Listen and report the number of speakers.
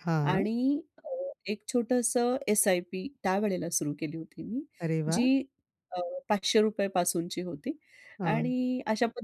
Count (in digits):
2